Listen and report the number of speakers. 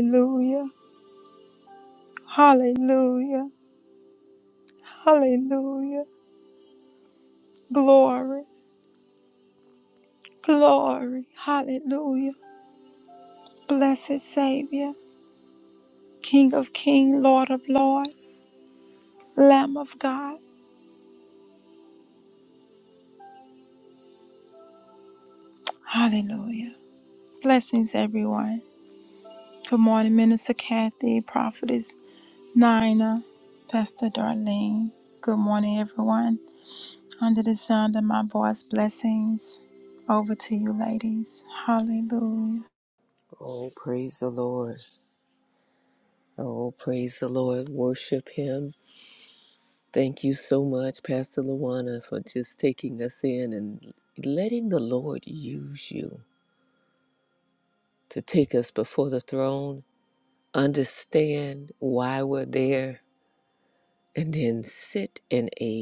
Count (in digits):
2